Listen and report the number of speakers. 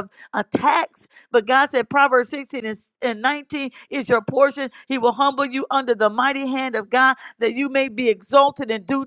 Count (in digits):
1